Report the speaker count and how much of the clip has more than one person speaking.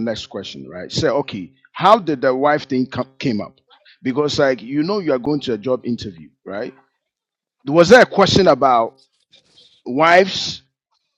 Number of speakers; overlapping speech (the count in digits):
1, no overlap